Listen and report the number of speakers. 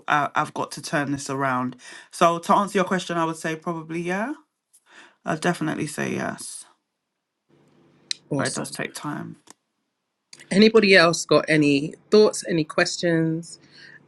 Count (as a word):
two